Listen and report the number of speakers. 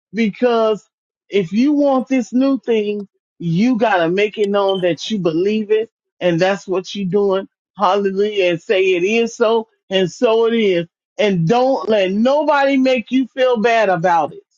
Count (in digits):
1